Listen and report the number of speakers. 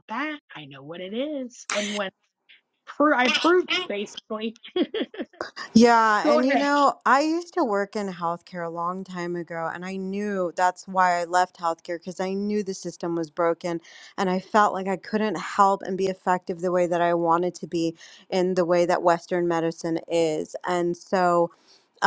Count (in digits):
2